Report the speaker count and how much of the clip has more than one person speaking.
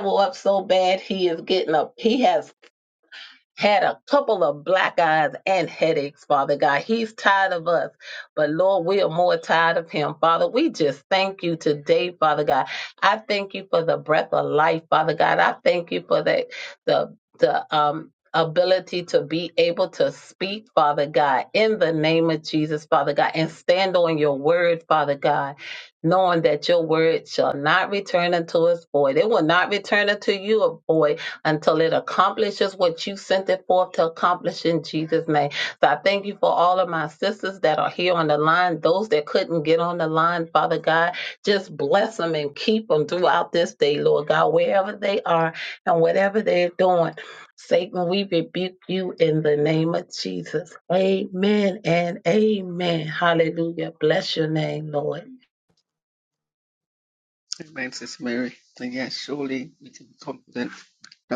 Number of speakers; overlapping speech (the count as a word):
two, no overlap